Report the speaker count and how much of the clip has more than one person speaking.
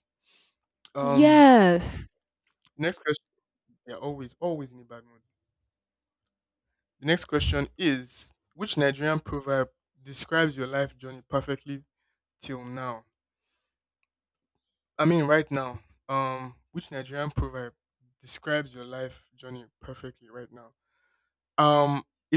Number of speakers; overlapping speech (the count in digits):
2, about 2%